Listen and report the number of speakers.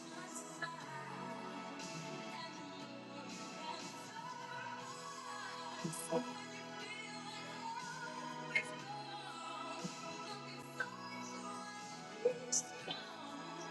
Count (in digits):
0